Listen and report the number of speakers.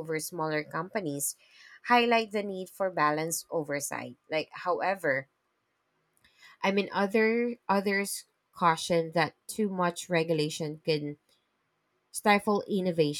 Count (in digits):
1